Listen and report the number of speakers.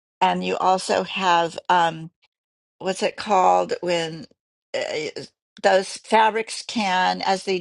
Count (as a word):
one